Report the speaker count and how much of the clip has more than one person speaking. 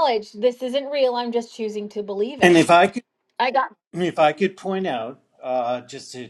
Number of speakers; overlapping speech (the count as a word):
two, about 3%